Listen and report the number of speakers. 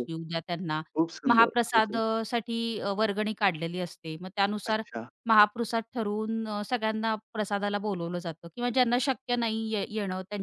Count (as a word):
two